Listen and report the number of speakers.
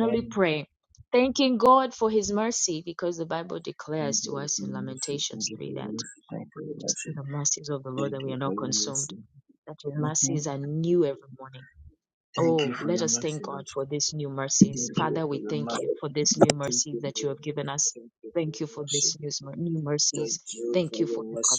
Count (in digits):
2